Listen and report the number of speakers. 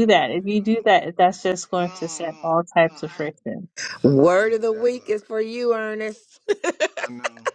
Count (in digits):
3